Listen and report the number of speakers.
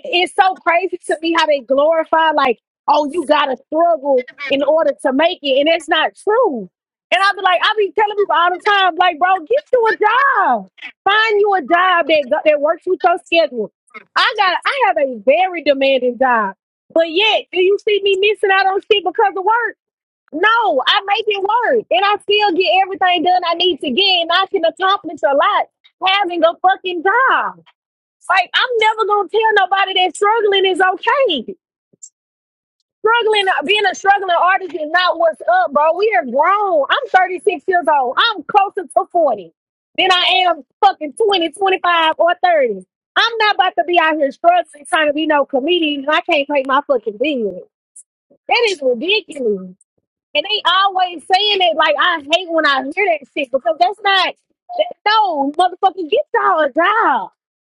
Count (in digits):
1